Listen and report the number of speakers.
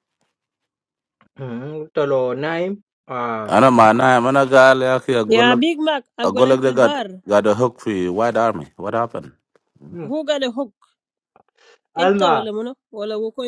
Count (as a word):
three